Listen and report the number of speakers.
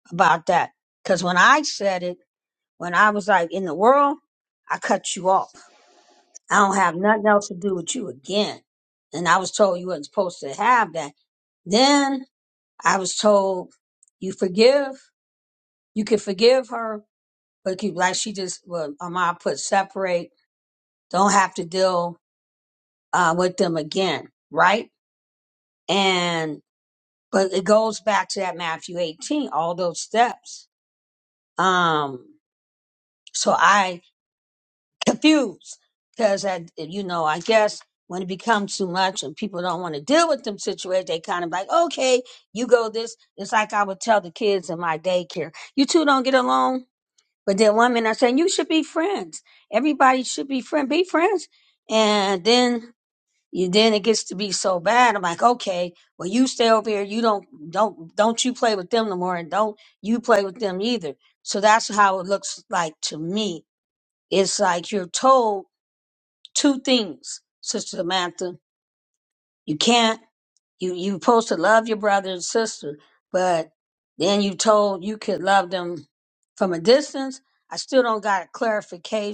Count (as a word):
one